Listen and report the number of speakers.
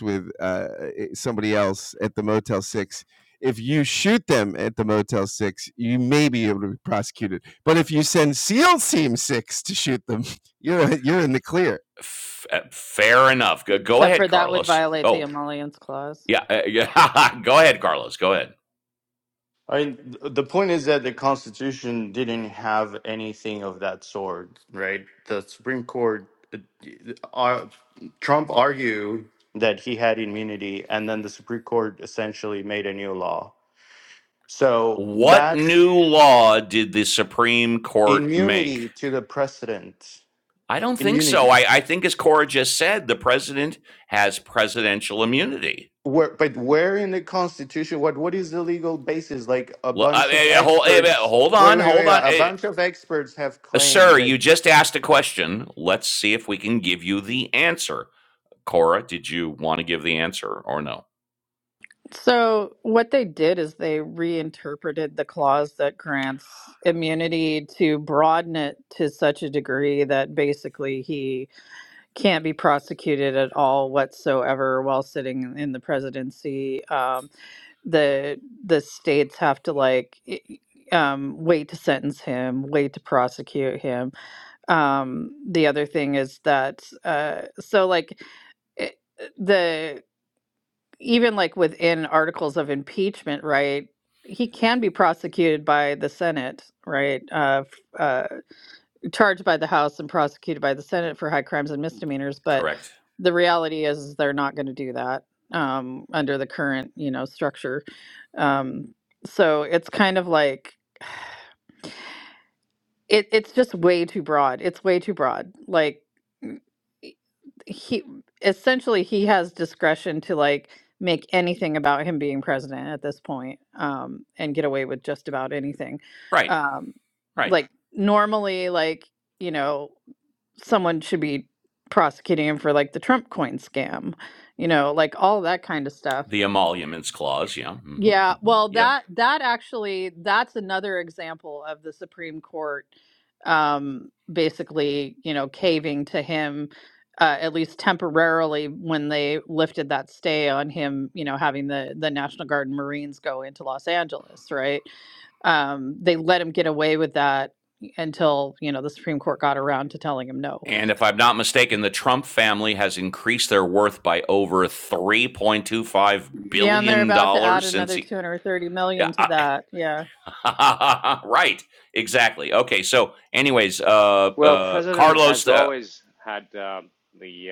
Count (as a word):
five